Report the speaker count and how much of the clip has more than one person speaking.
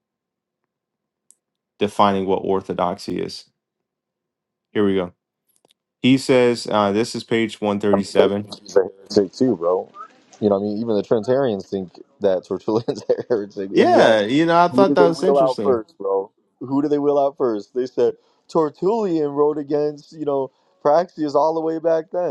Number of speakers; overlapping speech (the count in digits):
2, about 9%